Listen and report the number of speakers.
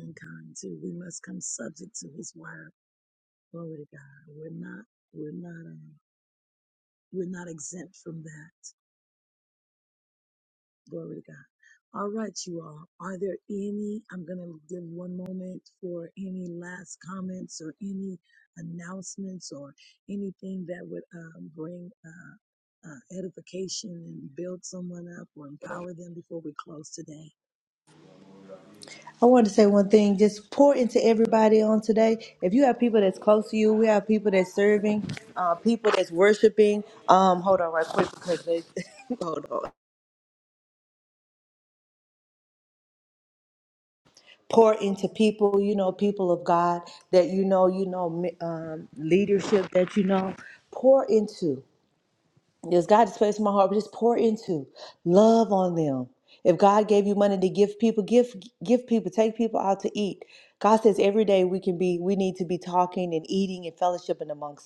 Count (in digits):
2